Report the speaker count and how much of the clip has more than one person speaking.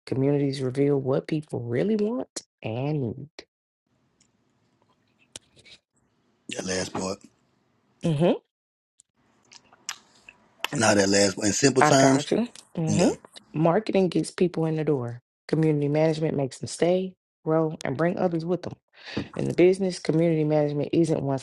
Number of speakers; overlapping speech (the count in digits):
2, about 3%